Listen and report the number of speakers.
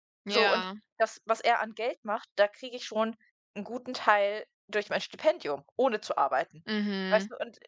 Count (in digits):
2